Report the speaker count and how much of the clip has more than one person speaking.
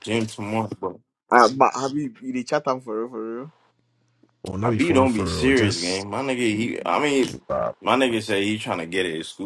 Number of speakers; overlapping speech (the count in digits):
3, about 14%